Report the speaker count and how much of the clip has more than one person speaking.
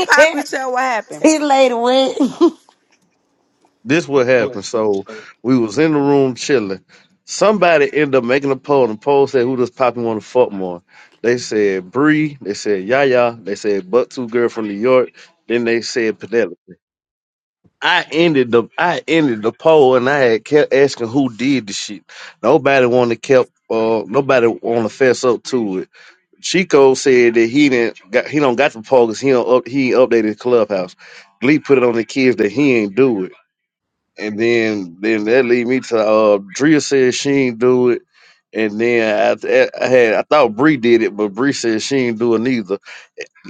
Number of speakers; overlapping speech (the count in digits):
3, under 1%